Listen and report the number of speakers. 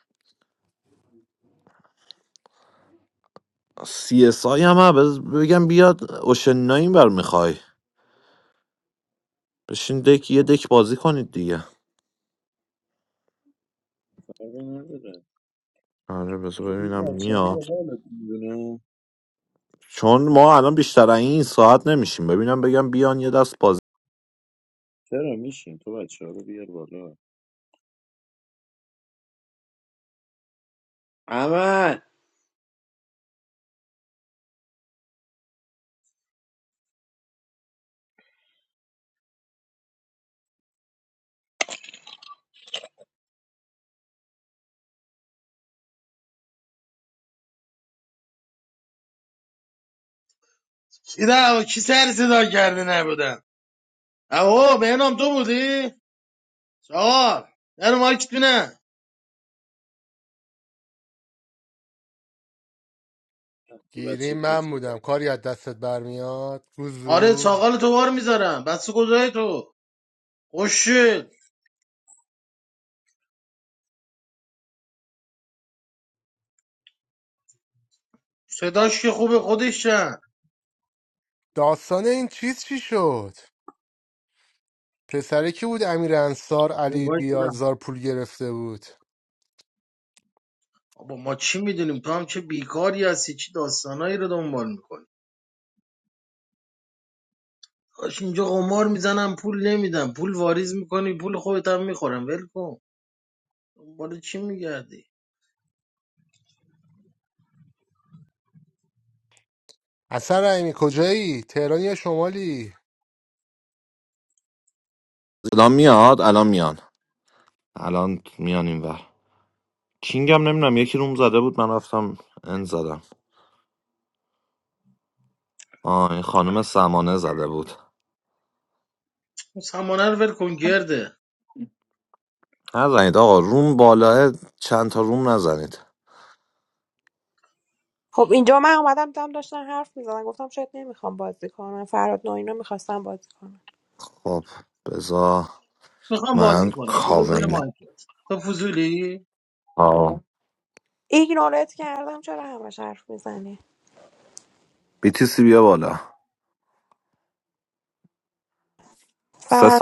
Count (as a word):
five